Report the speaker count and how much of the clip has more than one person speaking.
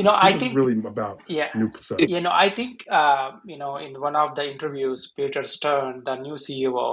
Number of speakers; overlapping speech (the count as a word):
two, about 10%